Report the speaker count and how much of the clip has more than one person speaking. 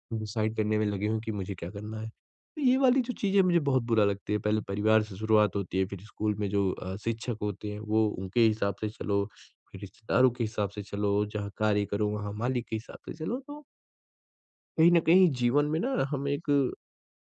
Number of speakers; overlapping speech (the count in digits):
1, no overlap